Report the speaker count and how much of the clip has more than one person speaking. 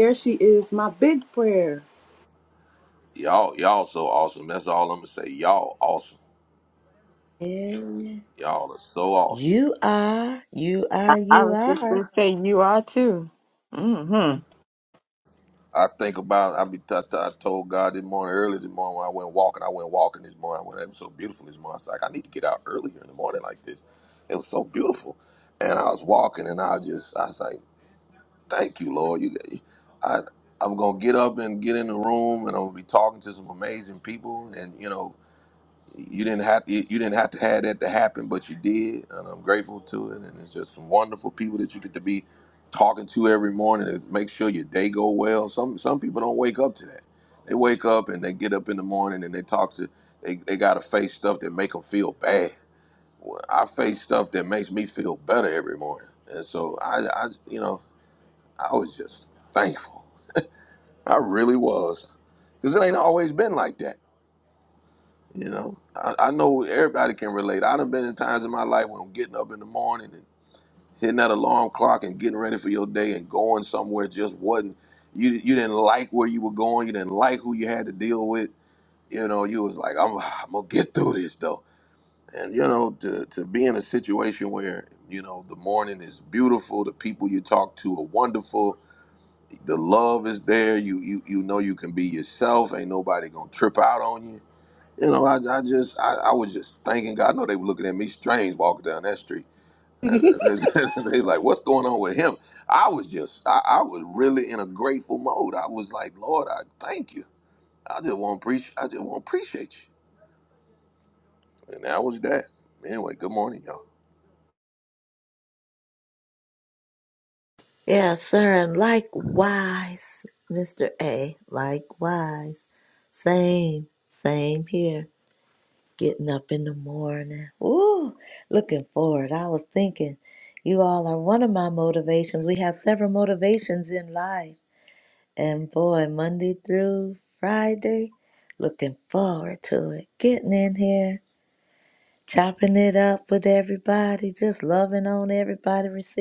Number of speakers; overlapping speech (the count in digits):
4, about 1%